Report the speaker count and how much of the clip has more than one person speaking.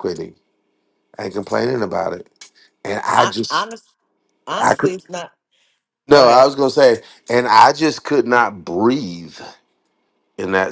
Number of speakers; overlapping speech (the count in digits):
2, about 11%